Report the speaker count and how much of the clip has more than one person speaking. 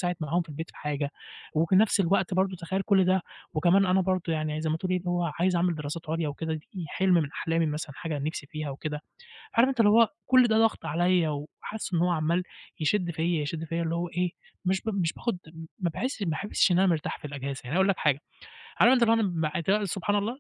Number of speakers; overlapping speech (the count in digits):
1, no overlap